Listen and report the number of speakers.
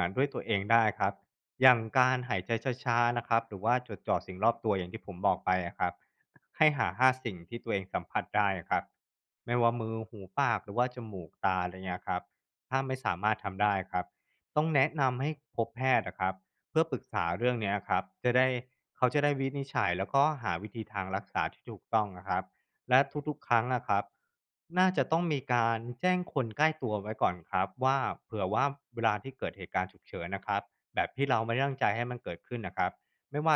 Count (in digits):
1